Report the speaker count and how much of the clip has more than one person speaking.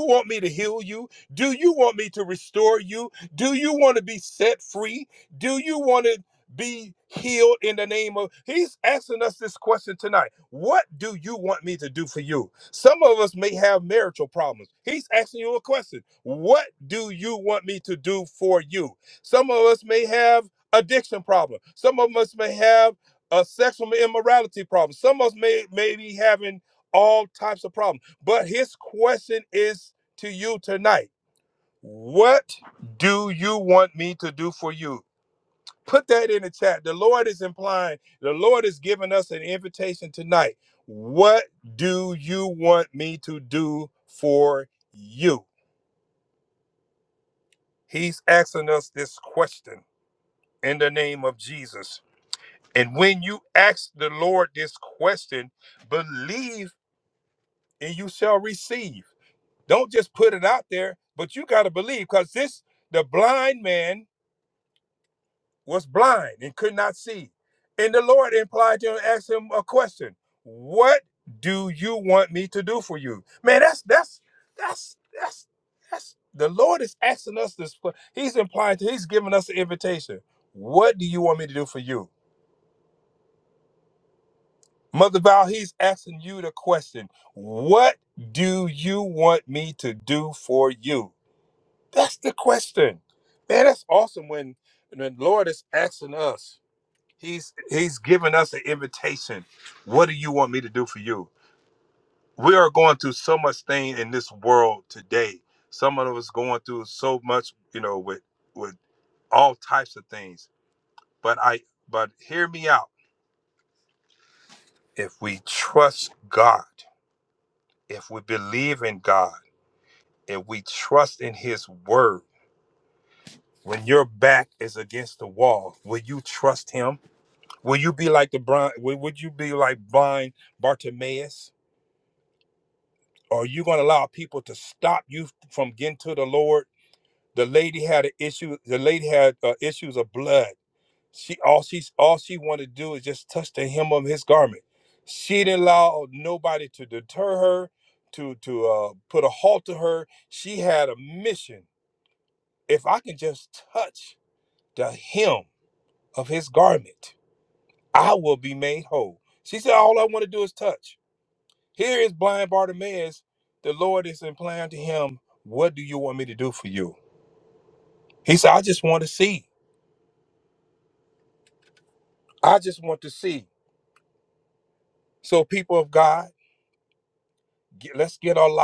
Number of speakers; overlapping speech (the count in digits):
1, no overlap